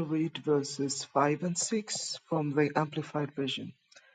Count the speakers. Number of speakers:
1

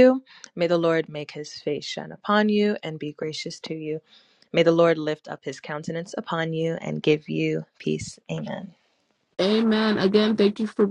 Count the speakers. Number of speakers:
2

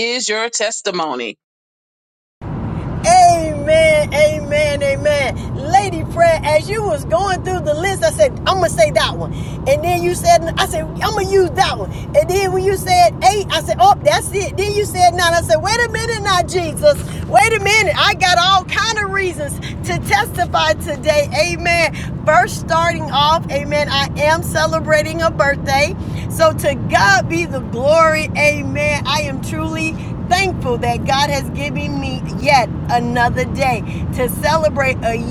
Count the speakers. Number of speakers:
2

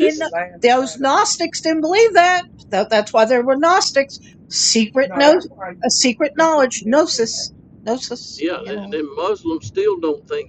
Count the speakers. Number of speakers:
3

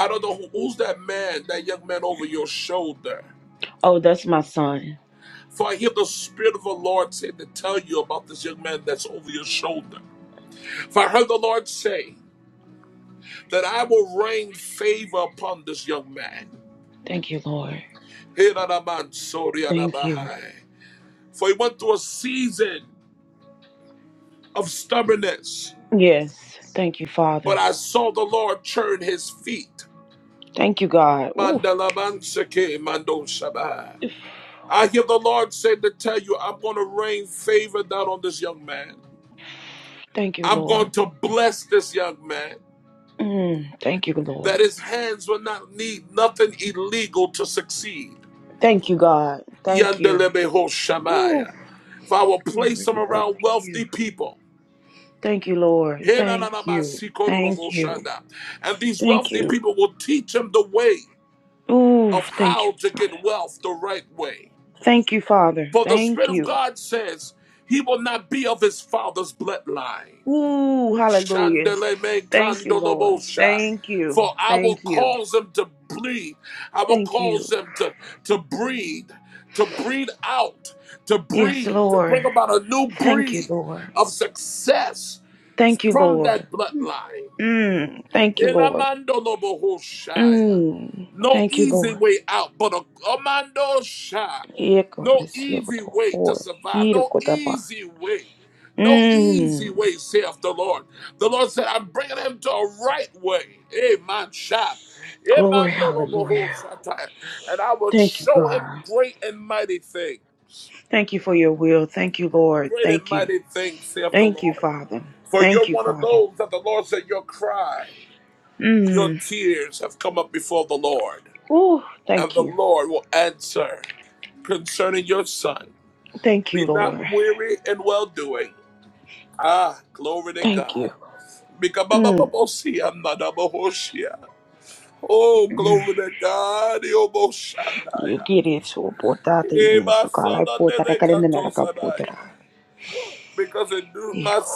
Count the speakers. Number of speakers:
2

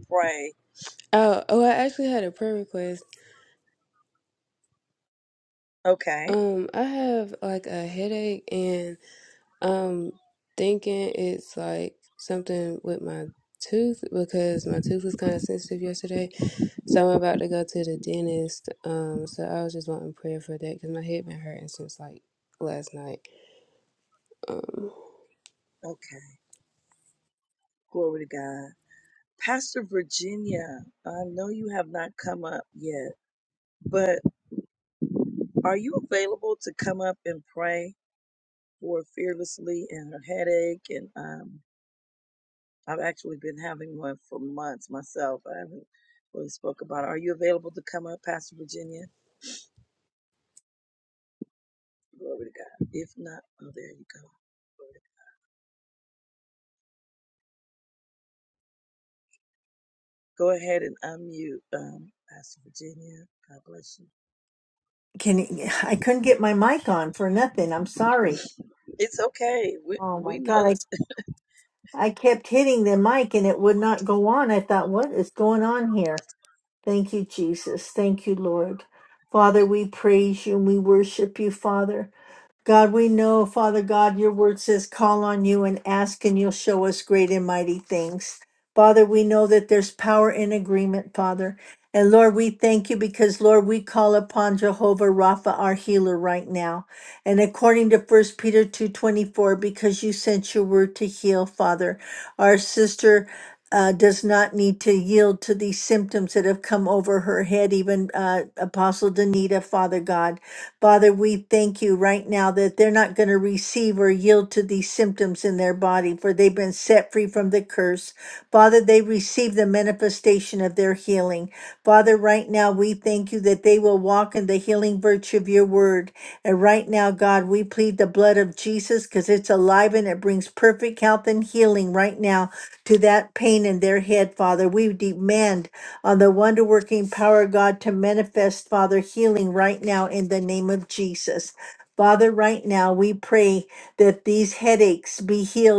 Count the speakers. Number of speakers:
3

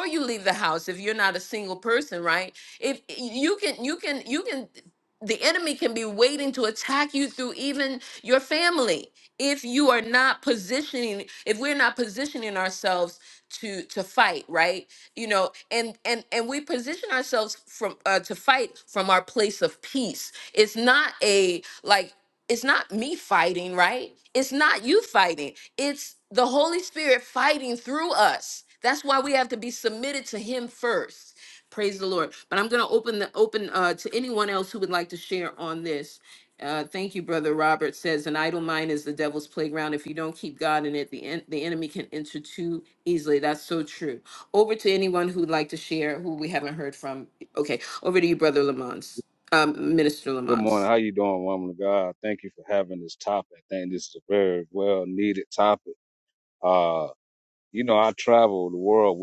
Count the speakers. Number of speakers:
2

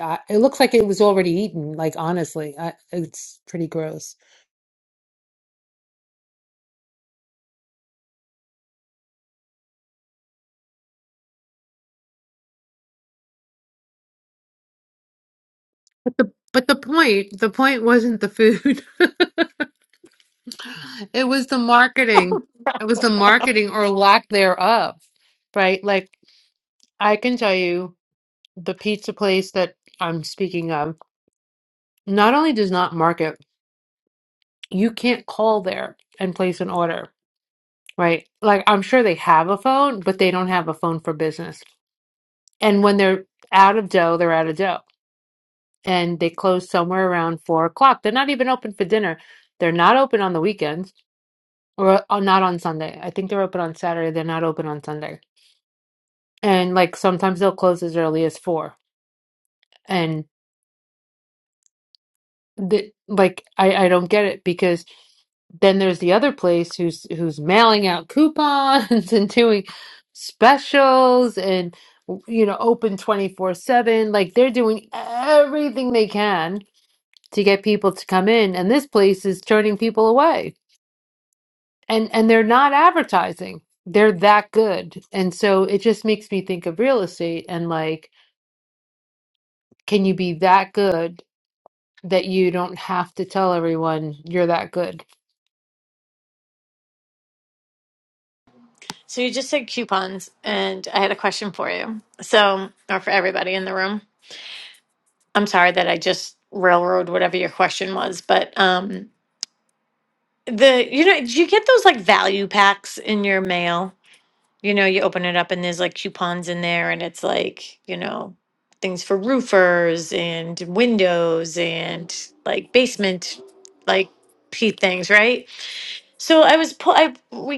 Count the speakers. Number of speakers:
2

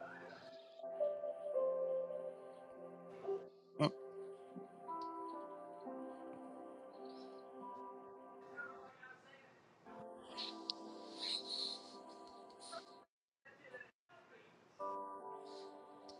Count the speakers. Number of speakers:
0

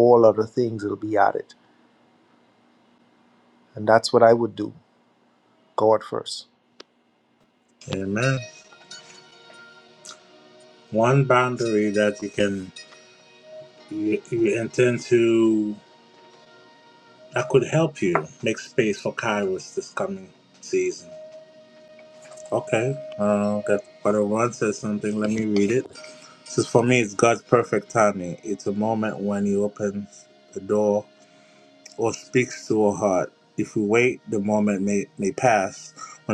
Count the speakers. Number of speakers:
2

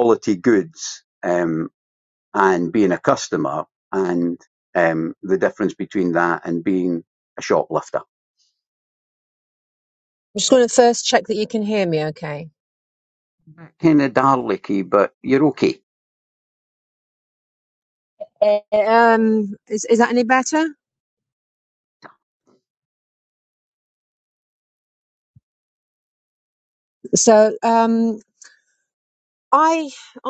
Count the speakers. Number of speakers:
2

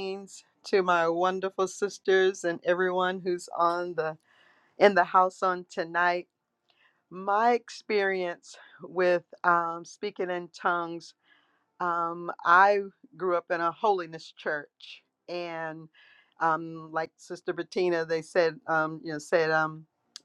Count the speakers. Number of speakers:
1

